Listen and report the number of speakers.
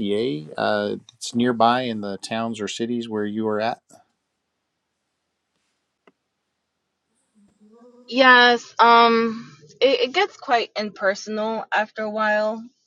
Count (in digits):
2